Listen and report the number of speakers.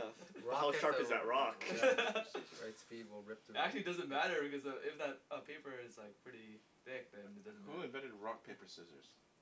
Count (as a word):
four